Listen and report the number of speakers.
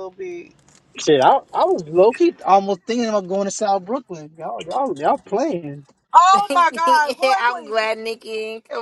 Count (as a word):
three